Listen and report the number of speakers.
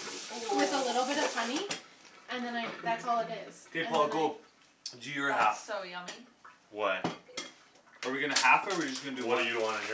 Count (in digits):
4